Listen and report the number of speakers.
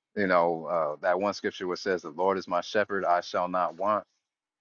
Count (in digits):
1